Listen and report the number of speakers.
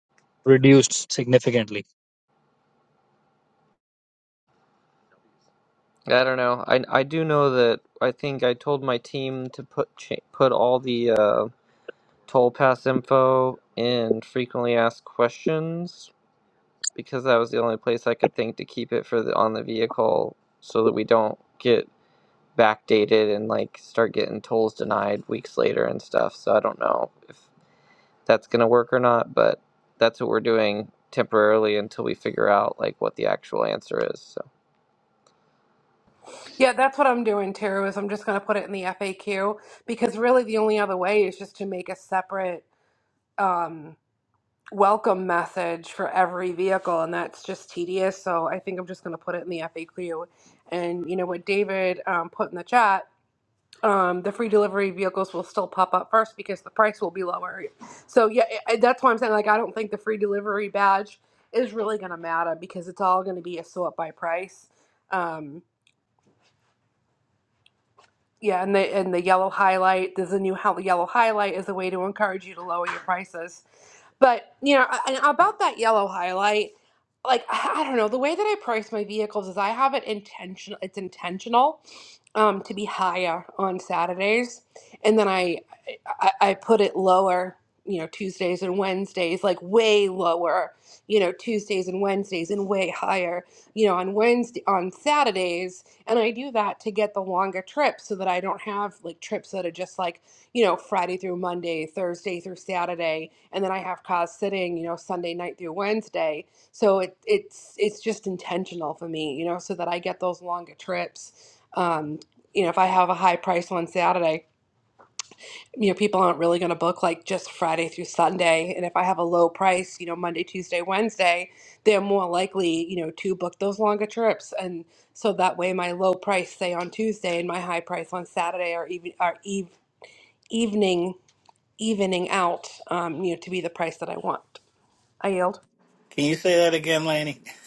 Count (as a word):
four